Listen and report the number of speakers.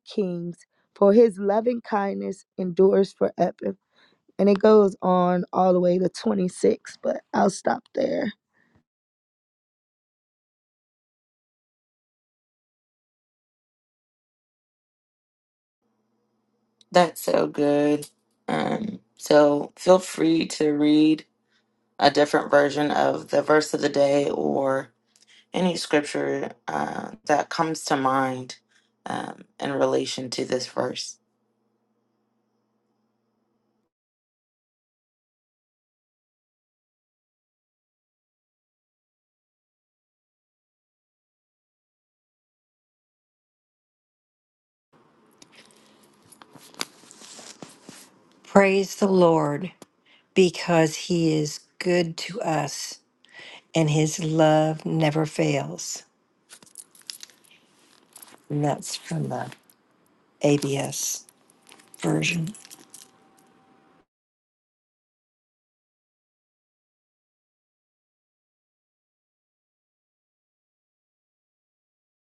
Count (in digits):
3